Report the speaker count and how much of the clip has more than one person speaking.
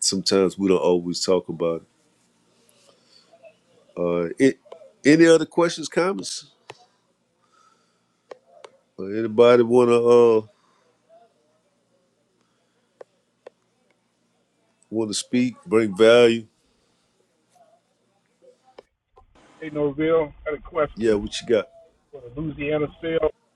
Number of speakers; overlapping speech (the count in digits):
2, about 1%